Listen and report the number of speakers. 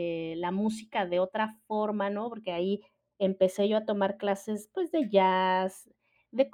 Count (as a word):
one